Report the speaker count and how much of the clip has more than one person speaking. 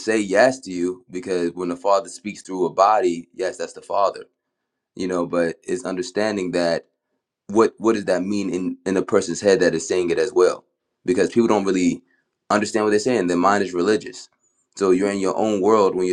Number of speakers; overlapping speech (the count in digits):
1, no overlap